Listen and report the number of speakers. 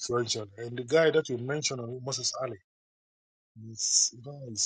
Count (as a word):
one